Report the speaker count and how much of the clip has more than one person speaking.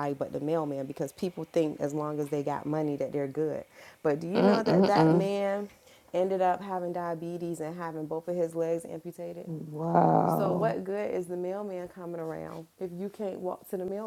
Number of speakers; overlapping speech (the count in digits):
2, about 8%